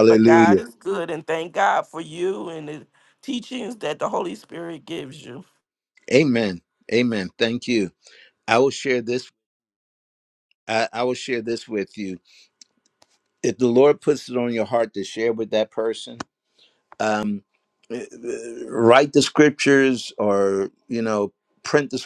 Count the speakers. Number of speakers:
2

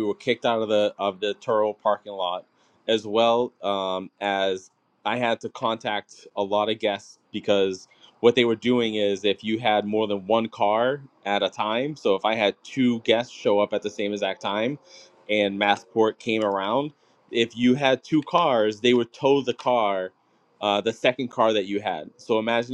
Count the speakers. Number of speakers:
1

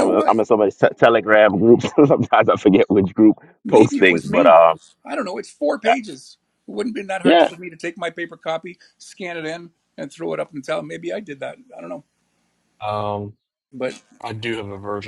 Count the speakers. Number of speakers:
3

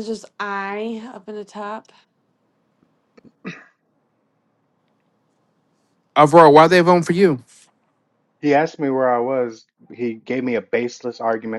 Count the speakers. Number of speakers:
3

